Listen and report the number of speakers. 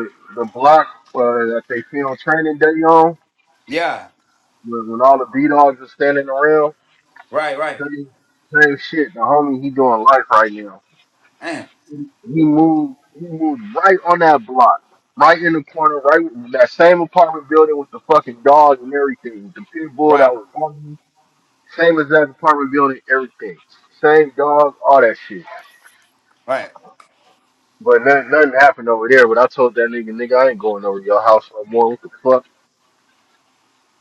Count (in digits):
2